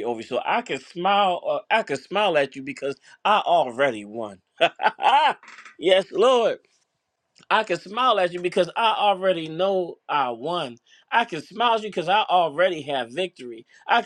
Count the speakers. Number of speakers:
1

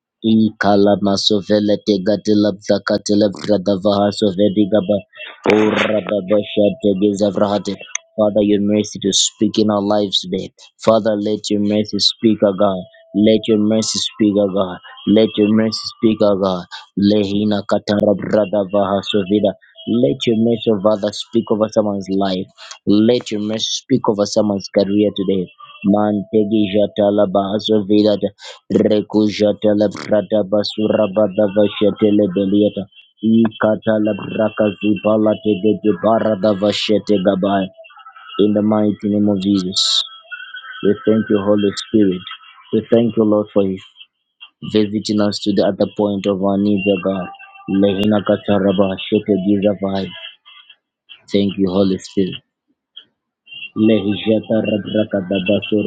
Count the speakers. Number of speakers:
1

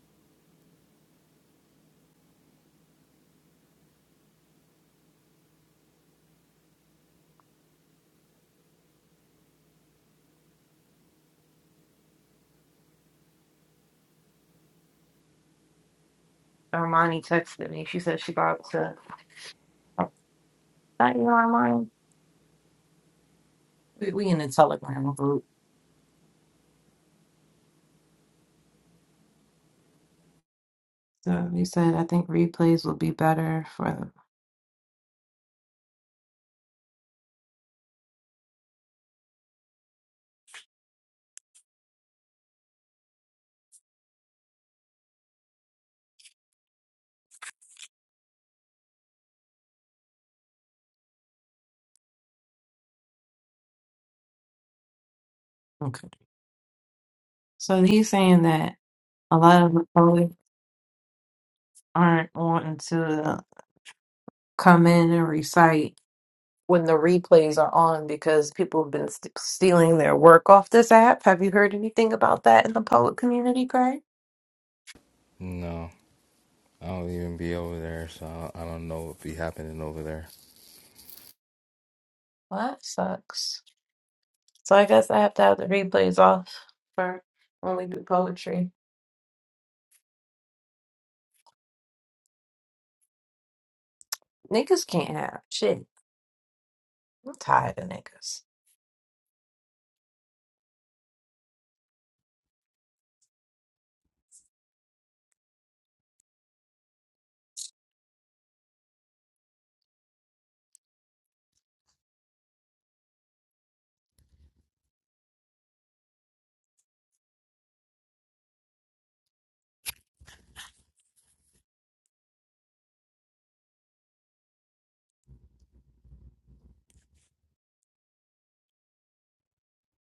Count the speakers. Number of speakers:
2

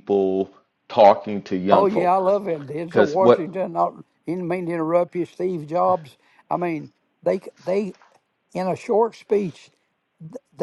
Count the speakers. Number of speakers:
2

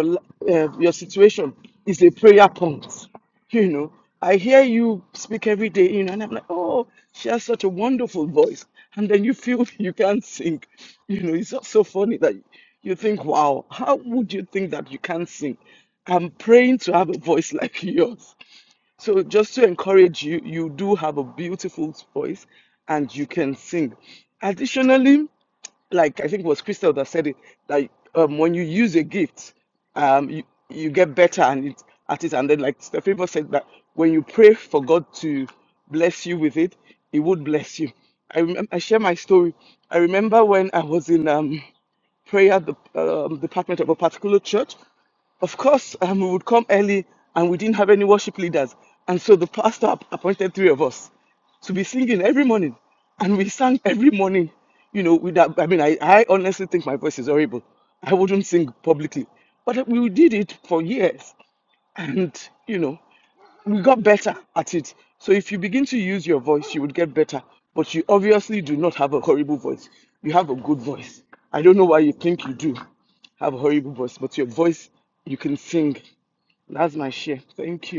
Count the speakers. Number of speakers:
1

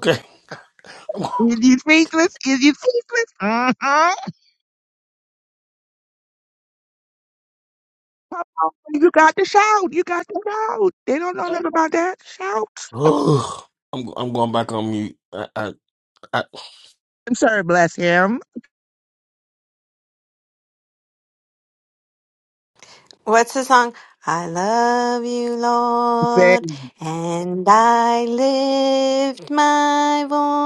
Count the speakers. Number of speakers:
3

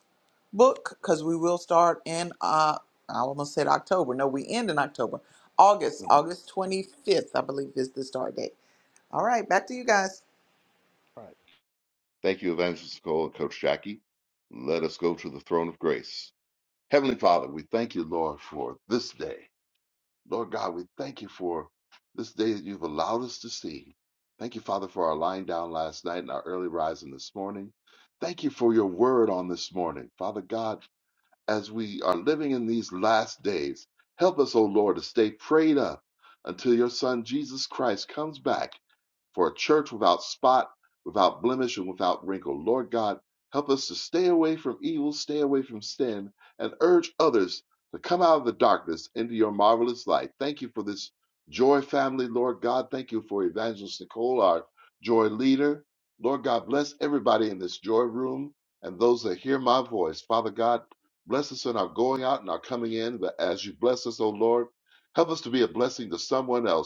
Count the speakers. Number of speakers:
2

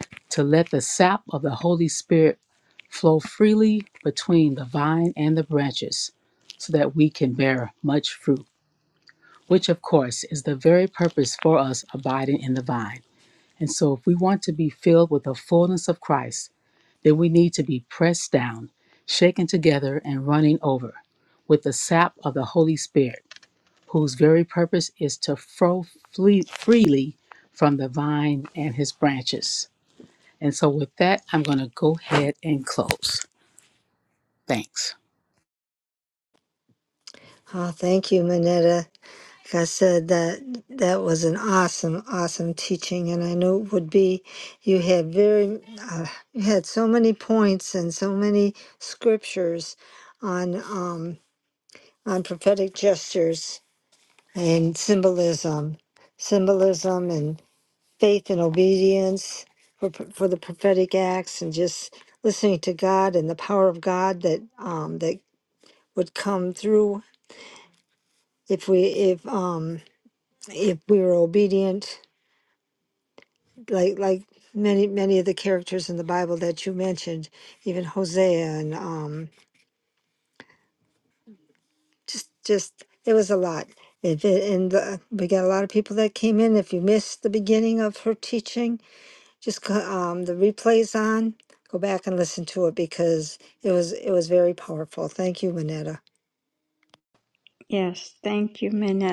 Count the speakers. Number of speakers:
3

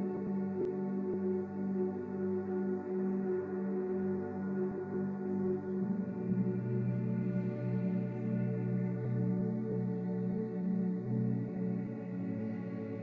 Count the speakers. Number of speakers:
0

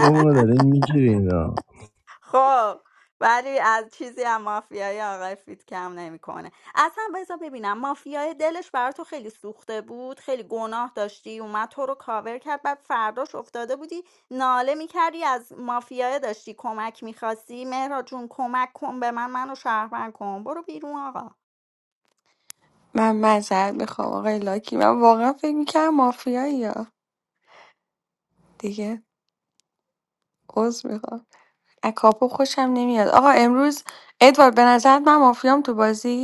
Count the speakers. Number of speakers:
3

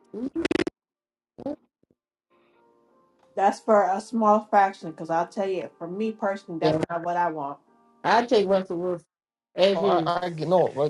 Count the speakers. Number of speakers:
3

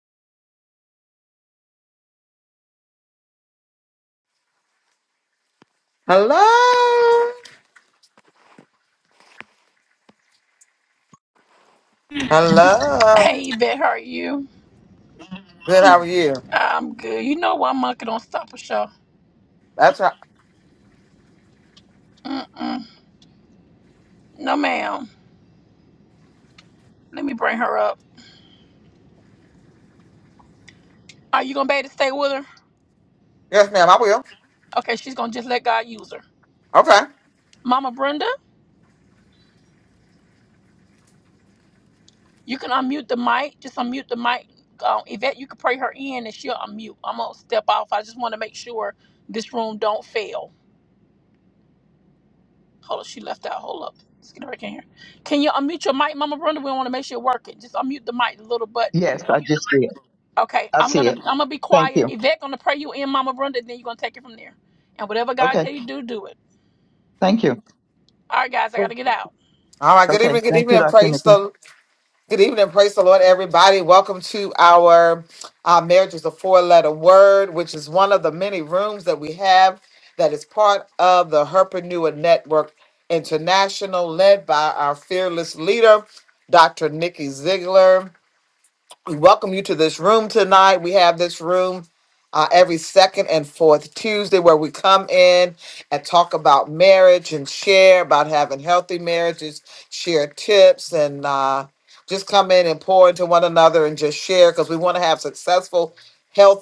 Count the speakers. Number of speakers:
3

